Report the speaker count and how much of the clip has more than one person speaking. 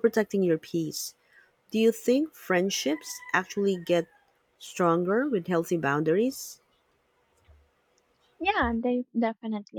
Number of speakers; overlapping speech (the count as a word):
two, no overlap